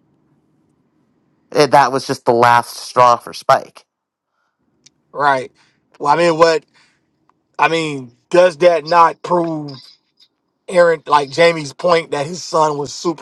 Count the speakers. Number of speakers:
2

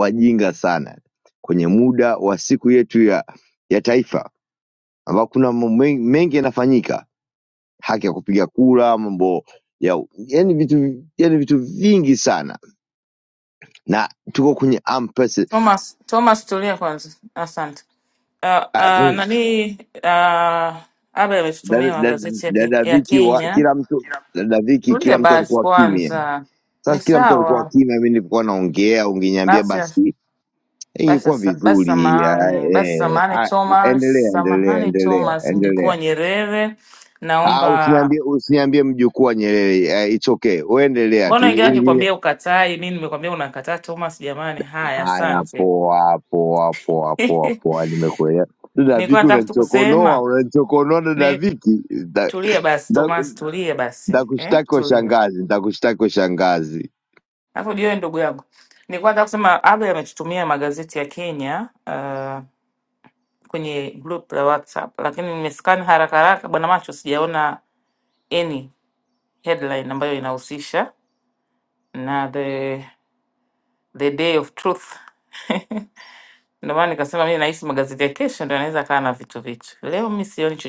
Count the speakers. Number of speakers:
2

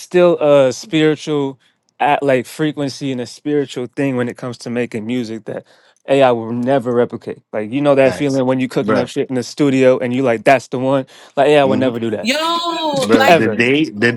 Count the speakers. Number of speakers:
3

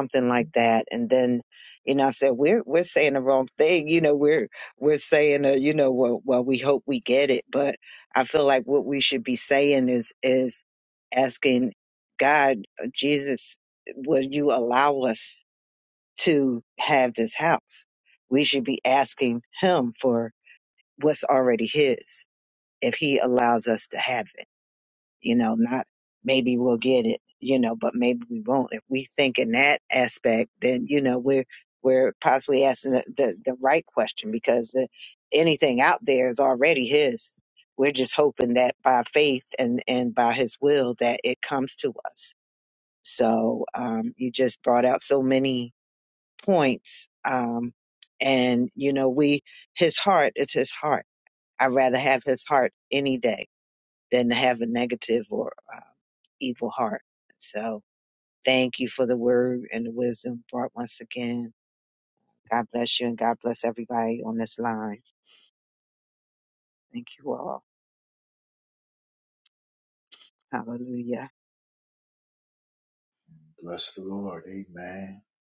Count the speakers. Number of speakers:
2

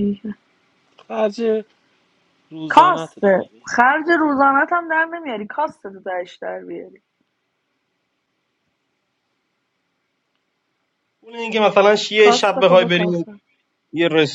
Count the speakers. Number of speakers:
3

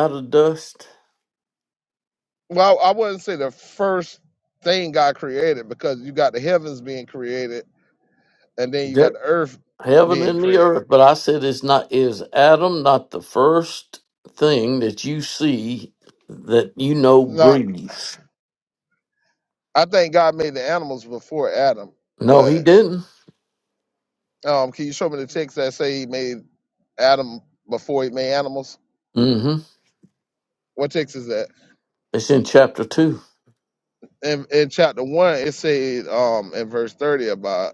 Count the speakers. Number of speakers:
2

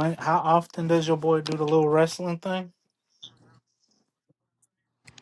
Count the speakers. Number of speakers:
1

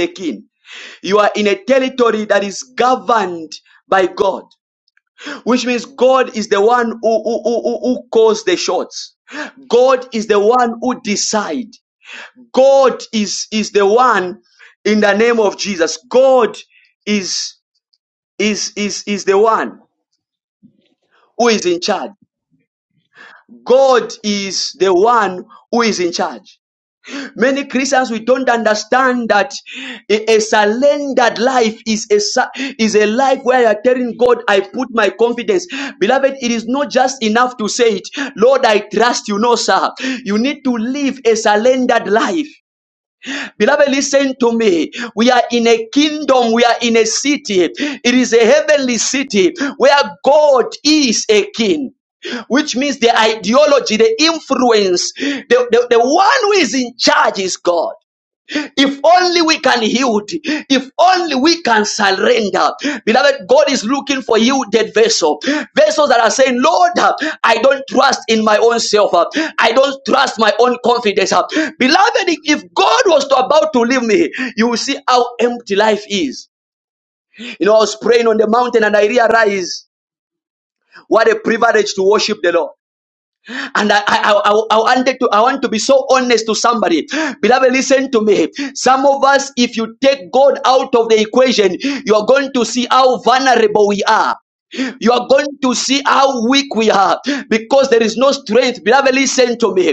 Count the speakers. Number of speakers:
1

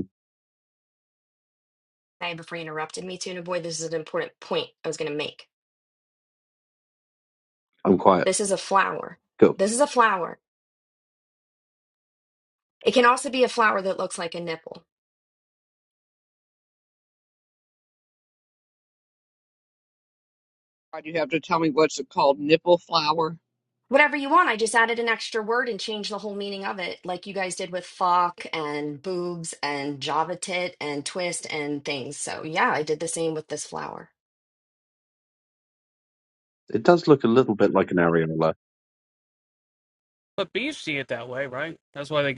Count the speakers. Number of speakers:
4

